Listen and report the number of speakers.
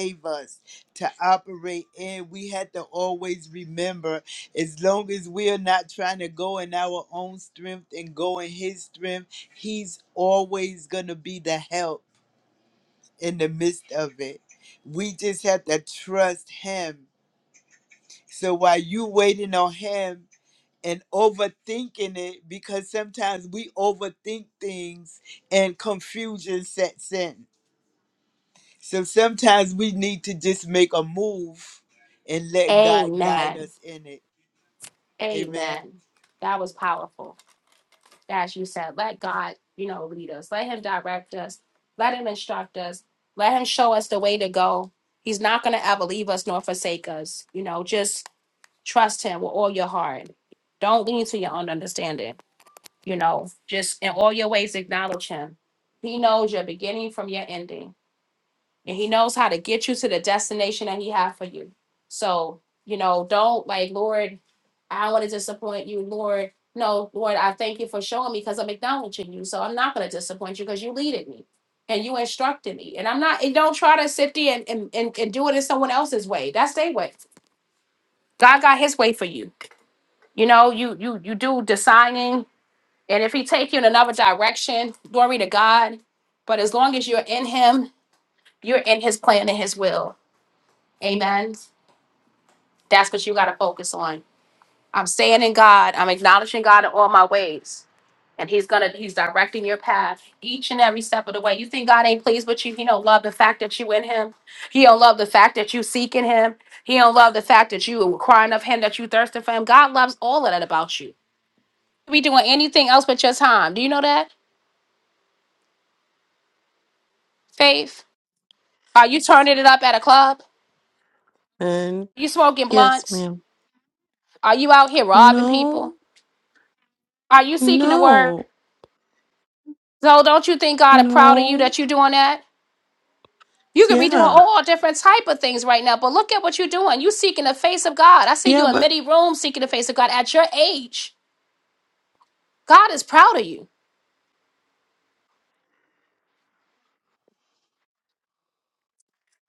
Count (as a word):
three